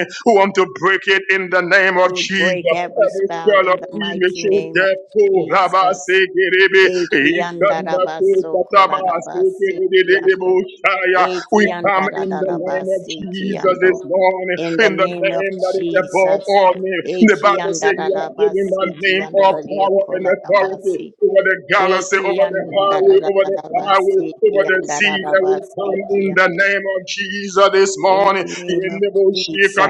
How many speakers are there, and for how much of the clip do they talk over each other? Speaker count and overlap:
2, about 68%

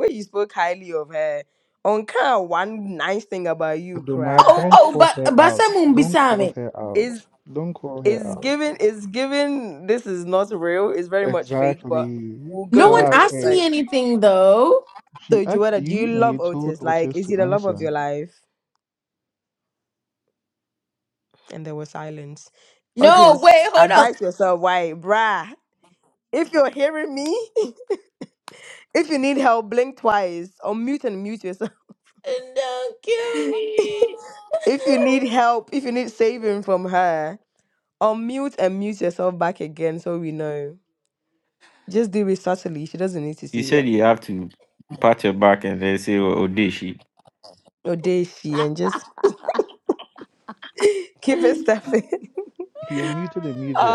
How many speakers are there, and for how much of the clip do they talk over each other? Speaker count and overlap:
4, about 17%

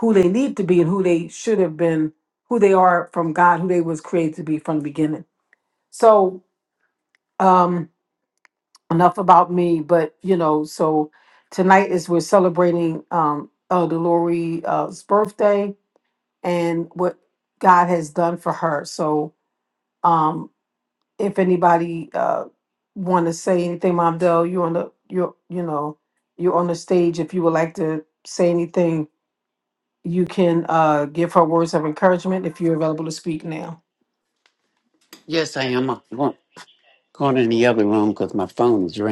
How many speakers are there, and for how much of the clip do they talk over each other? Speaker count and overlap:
2, no overlap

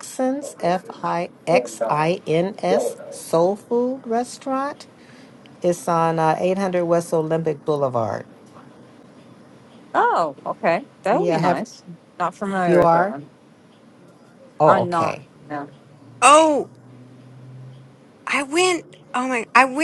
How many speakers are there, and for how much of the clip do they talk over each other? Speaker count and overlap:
3, about 8%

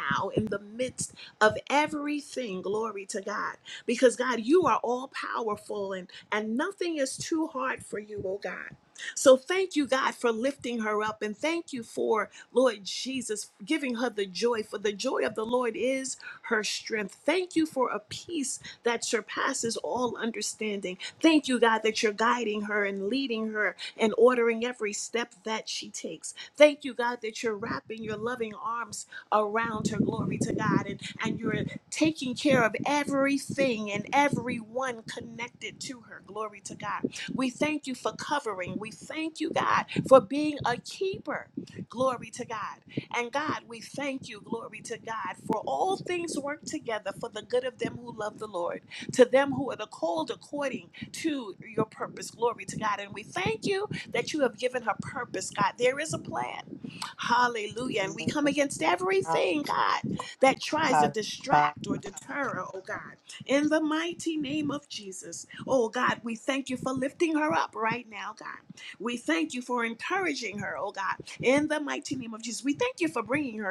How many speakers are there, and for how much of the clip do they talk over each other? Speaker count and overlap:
1, no overlap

